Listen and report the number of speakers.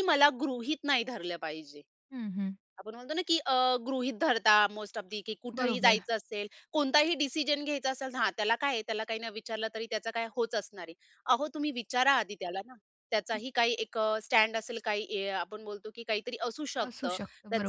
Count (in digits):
2